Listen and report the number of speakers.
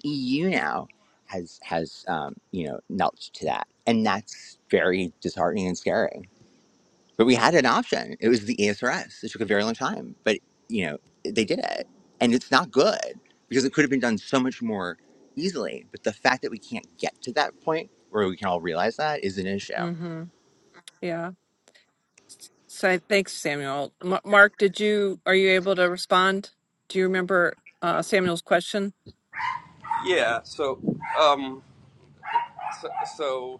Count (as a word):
three